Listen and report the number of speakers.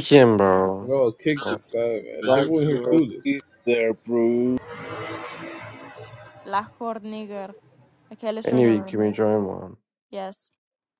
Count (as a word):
four